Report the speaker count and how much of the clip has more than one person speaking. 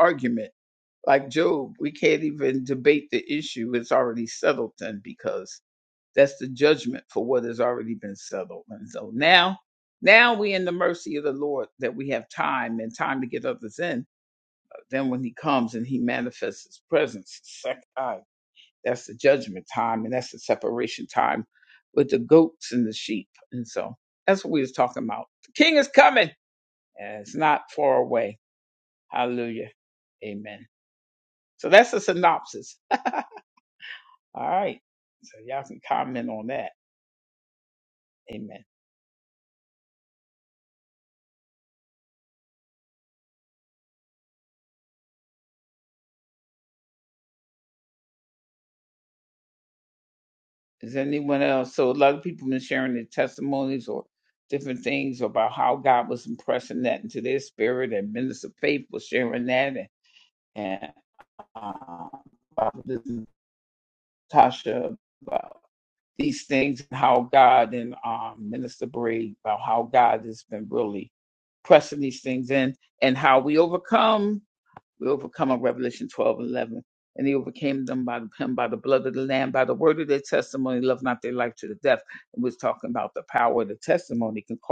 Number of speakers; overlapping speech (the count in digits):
1, no overlap